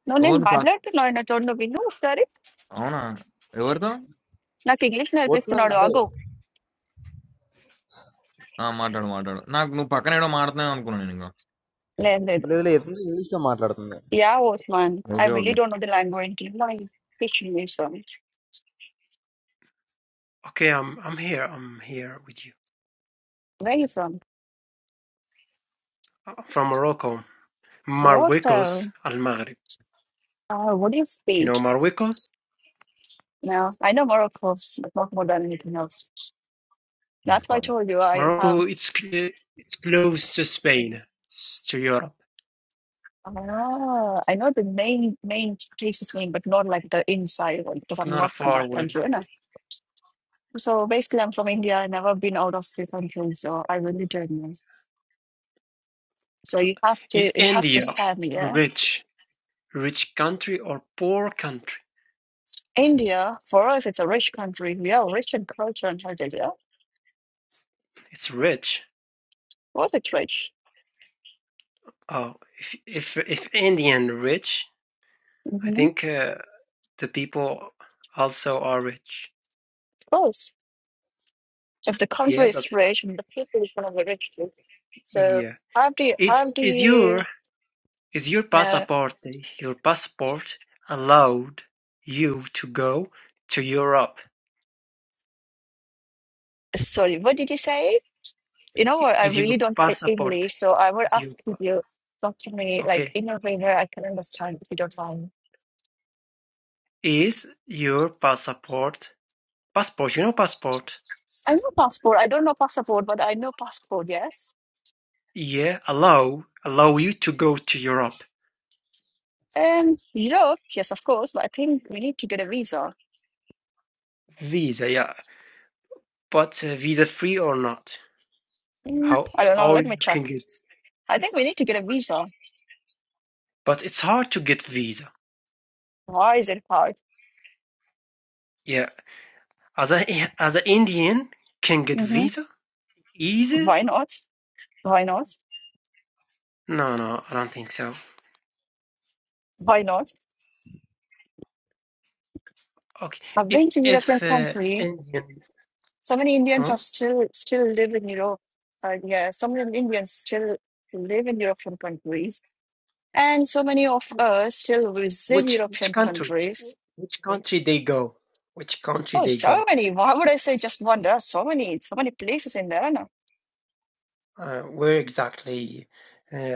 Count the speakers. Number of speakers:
4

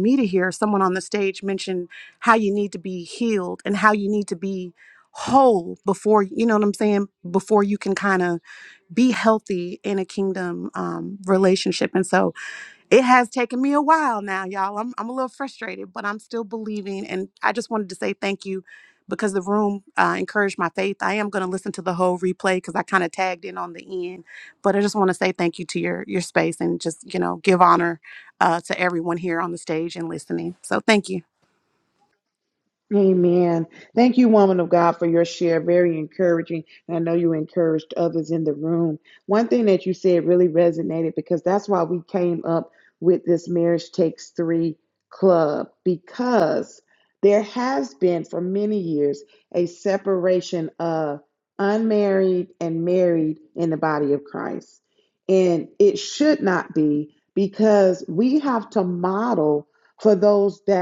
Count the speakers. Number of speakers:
2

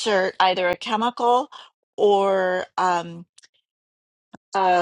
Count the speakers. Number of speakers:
1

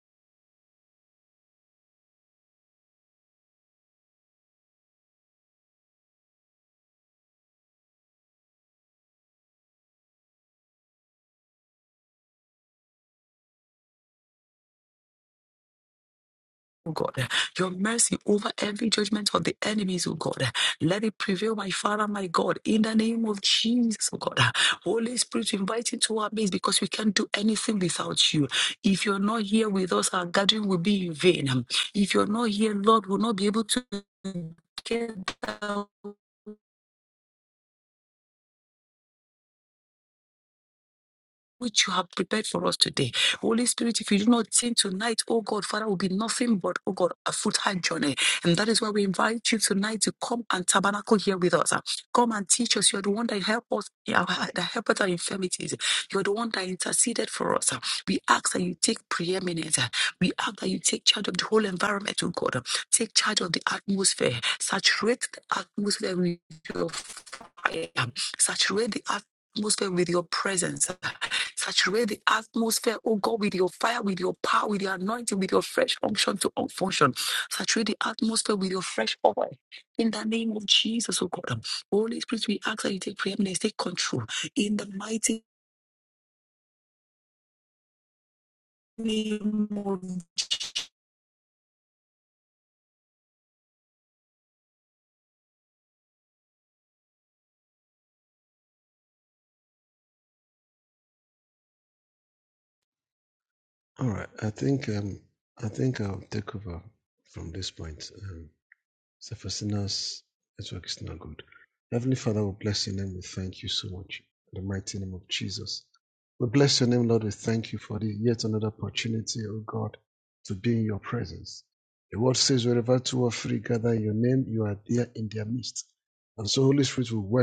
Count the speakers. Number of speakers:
2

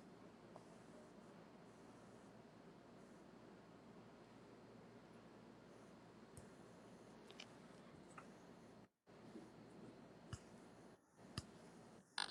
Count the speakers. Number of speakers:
0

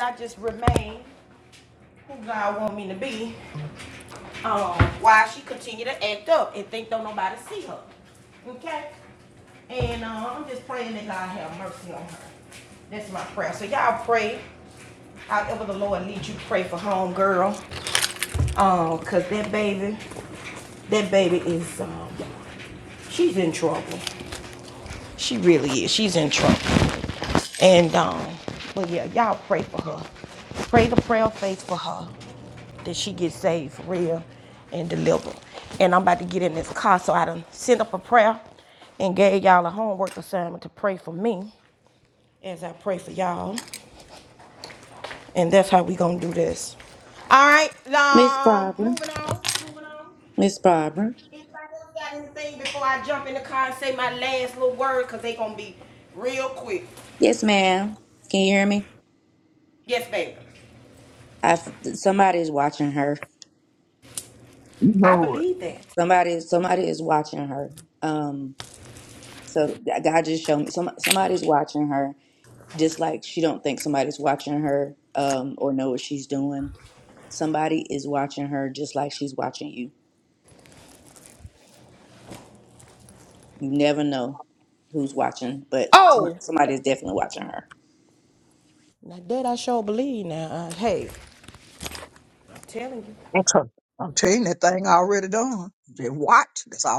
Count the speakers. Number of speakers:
3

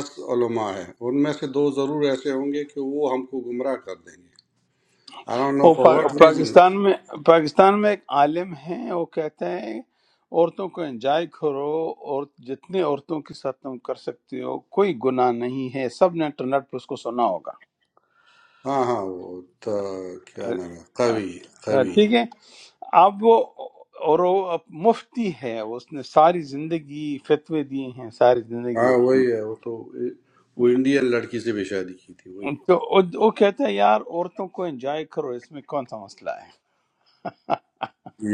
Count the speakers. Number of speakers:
2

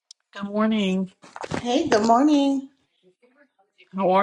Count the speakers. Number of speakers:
2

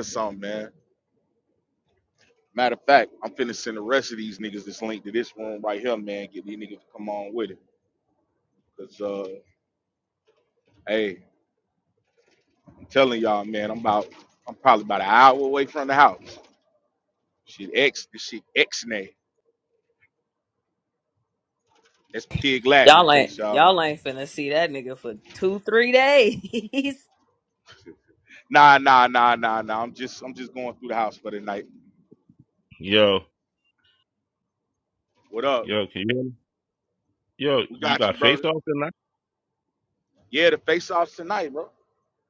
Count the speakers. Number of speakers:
3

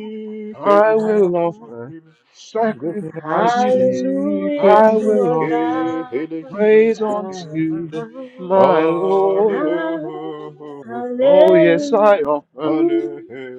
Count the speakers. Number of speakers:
3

